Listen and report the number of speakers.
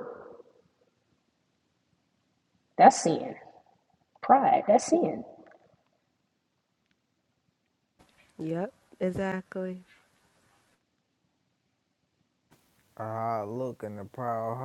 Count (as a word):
three